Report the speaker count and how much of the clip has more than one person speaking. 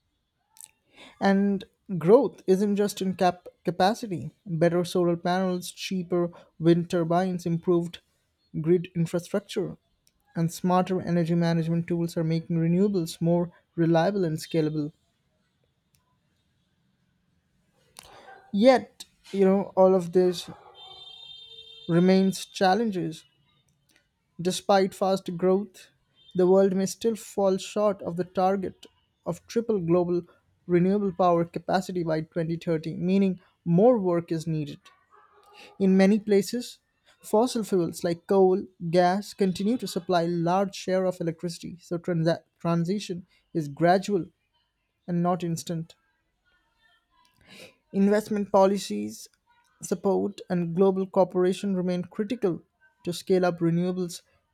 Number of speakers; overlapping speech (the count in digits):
1, no overlap